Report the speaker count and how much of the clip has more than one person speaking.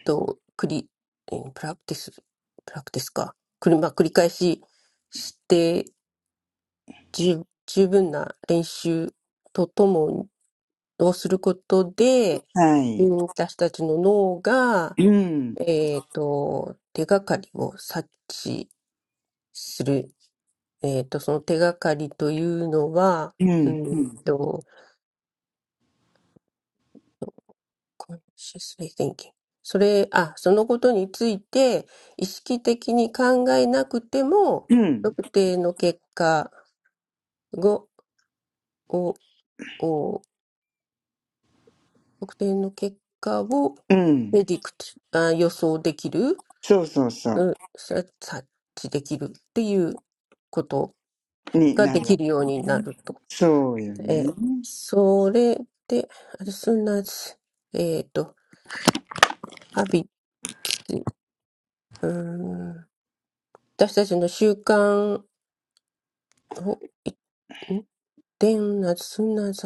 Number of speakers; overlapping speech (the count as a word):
two, about 2%